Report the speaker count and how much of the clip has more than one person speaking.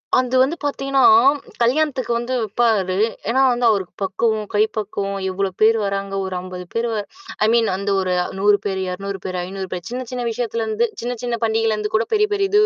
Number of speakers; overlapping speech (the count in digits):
1, no overlap